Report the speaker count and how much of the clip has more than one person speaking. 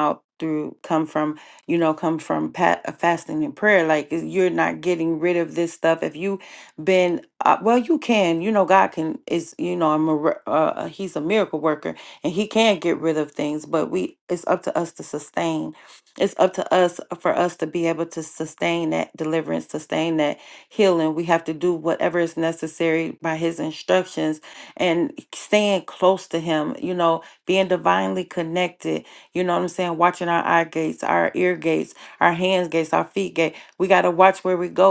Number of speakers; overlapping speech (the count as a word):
one, no overlap